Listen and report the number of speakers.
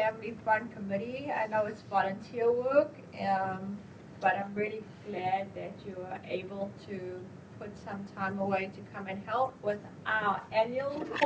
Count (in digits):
1